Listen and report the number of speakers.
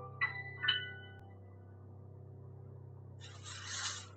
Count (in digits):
0